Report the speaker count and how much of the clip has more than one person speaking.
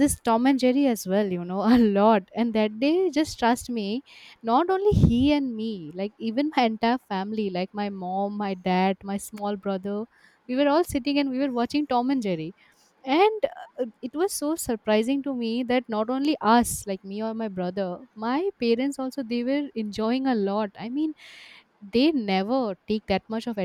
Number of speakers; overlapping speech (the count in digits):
1, no overlap